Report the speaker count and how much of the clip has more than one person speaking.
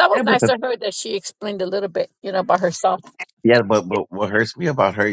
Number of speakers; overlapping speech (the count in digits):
2, about 7%